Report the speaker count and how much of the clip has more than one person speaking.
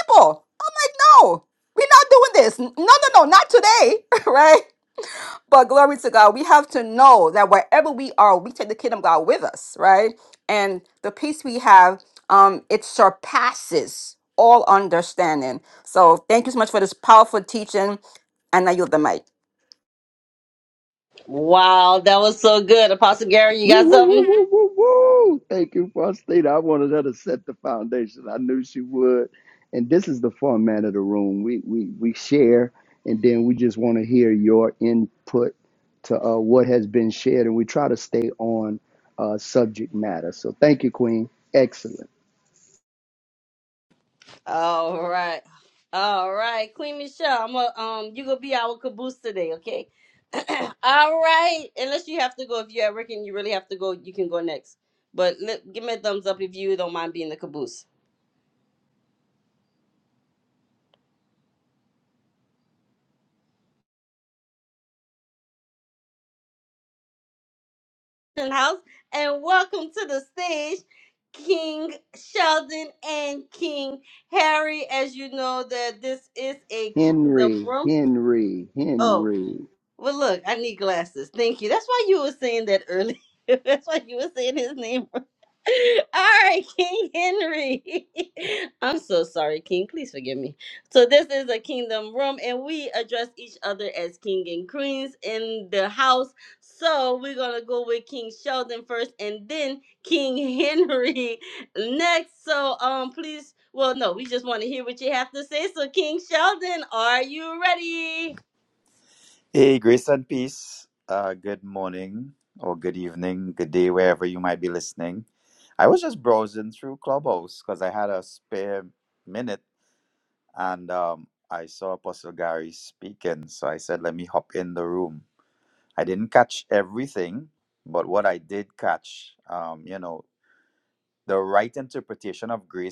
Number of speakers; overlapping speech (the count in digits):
4, about 1%